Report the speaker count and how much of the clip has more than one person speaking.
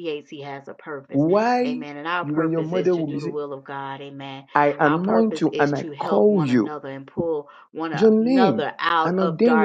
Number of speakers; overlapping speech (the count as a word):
two, about 54%